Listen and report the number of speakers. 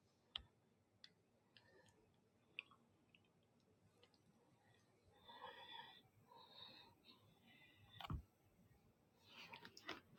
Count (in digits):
0